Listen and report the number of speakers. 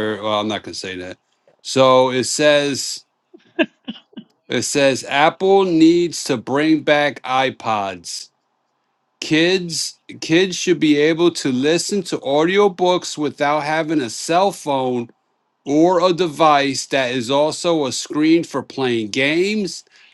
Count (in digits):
1